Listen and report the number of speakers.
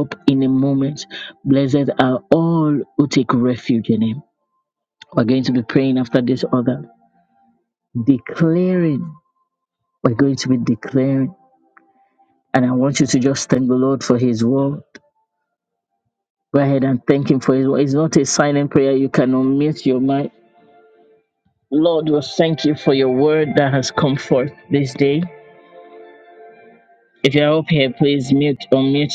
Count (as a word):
one